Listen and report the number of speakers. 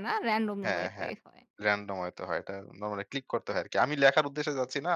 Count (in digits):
2